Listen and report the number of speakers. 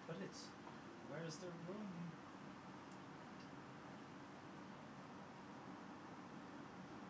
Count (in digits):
1